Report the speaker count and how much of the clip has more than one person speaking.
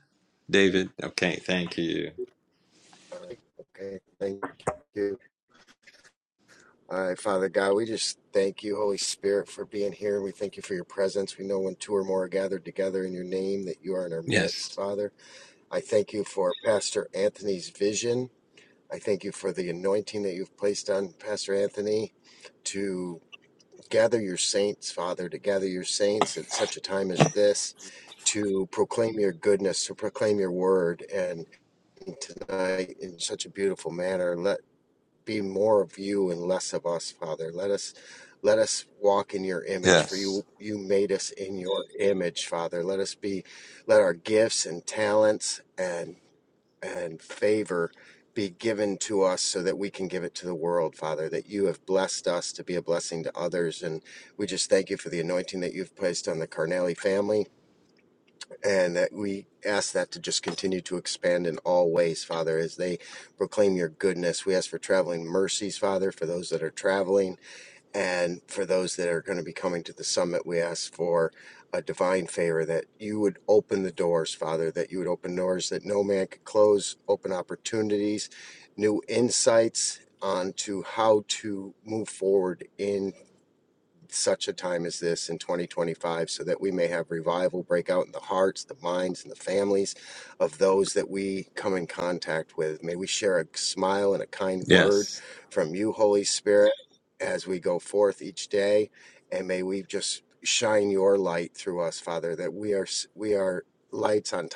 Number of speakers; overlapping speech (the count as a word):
two, about 1%